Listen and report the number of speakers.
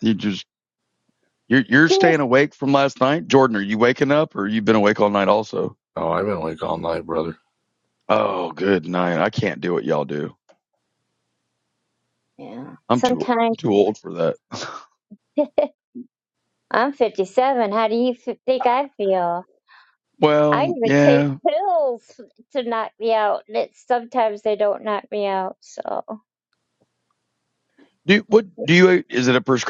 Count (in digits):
3